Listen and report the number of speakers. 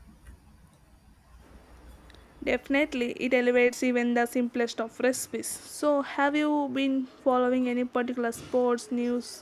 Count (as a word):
one